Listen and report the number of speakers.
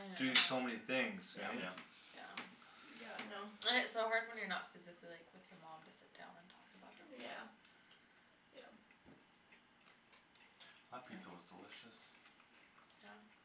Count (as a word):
four